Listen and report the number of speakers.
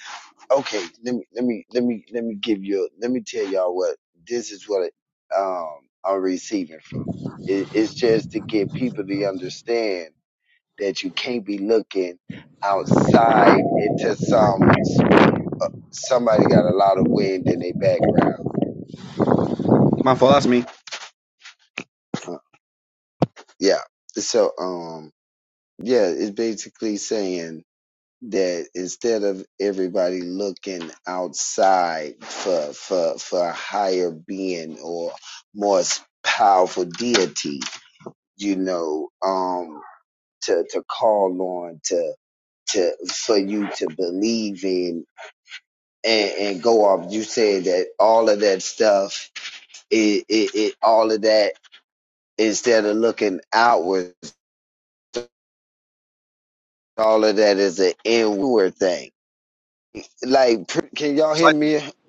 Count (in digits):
2